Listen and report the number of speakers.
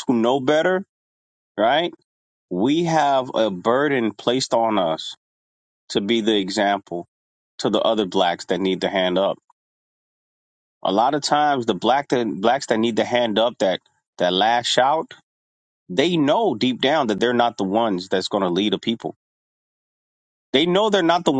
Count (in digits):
1